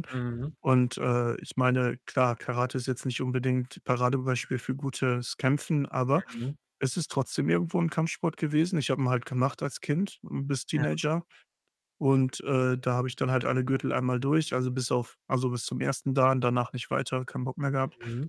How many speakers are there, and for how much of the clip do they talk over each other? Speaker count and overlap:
2, about 1%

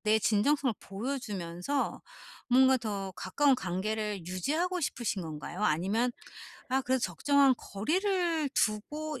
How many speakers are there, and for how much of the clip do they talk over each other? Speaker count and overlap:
1, no overlap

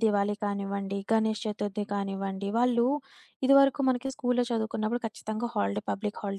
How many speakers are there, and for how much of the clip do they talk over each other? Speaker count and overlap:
1, no overlap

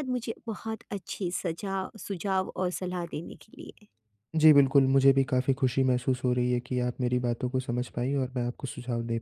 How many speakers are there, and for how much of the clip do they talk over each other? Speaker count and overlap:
2, no overlap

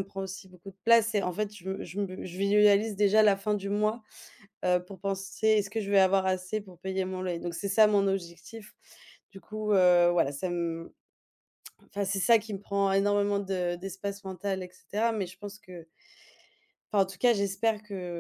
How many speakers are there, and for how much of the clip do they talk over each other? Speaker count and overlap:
1, no overlap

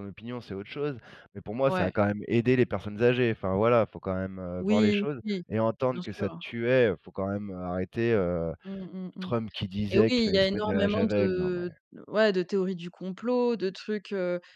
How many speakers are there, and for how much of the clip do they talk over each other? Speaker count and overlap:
2, about 23%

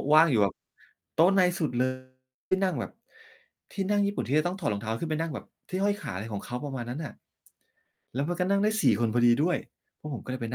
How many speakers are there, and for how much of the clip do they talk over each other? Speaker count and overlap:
1, no overlap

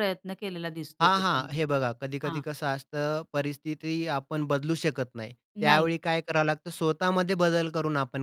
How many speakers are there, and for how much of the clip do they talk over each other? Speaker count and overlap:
2, about 13%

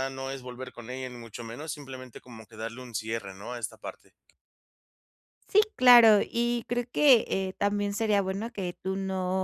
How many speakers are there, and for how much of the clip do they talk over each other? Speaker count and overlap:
2, no overlap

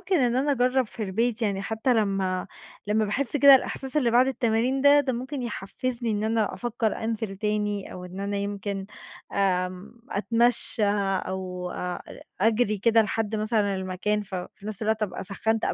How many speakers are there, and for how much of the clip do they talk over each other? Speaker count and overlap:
1, no overlap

